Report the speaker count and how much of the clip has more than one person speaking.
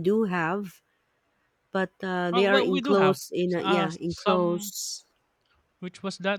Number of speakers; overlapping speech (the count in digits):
2, about 25%